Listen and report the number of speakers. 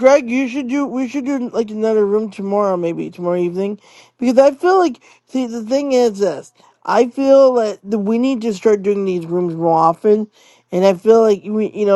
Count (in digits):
1